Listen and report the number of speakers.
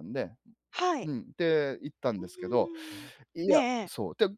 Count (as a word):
two